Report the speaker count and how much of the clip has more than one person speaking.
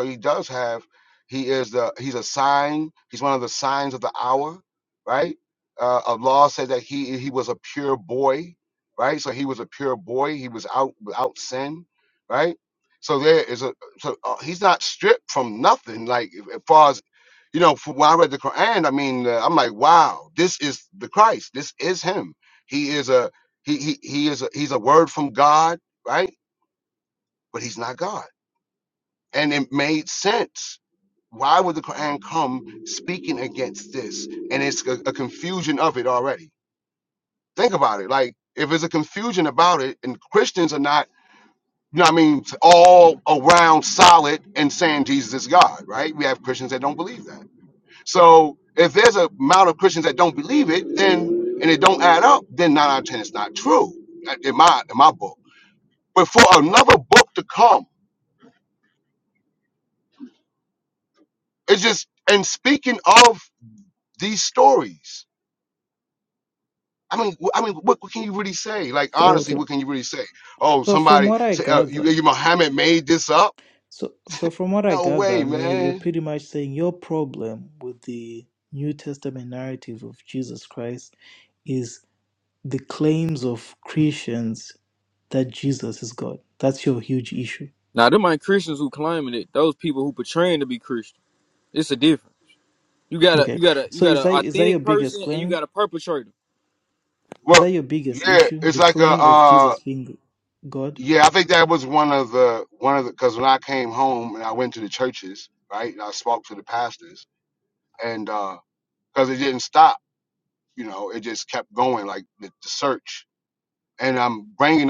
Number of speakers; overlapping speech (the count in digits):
3, about 6%